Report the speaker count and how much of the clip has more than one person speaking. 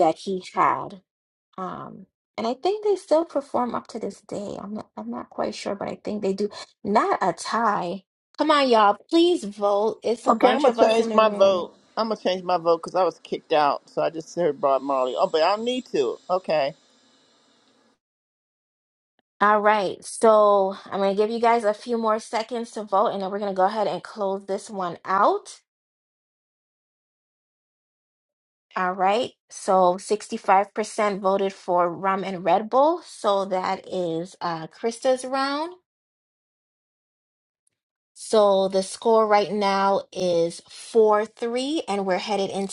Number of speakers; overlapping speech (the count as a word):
two, about 3%